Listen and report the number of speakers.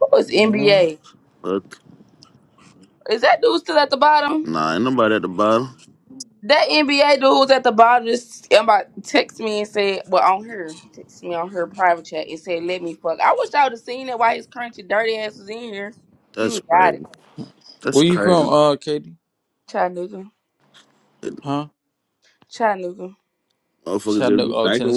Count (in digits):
3